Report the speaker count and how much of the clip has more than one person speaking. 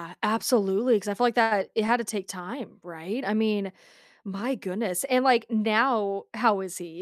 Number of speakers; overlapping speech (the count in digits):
1, no overlap